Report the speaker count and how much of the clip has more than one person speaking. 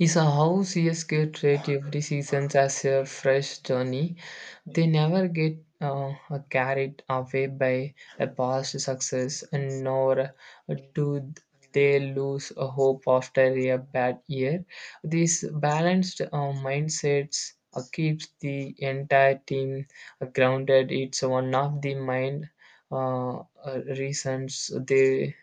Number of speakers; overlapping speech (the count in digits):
1, no overlap